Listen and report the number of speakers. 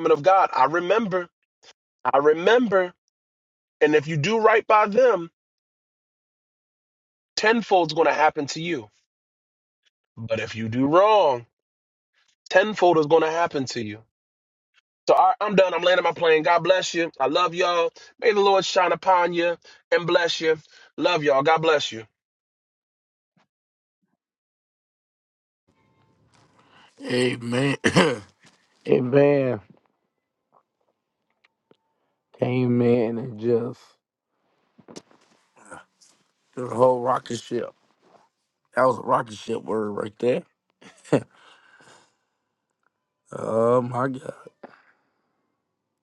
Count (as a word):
two